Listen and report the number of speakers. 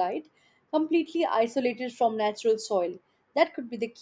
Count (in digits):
1